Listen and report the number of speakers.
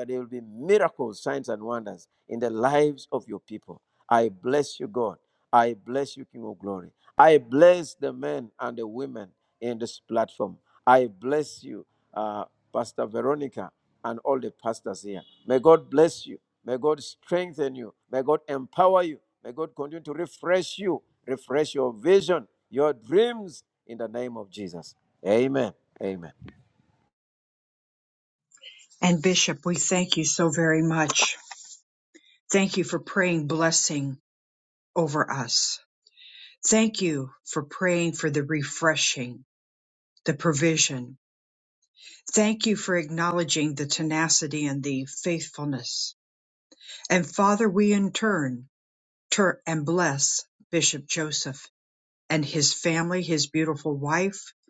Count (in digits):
2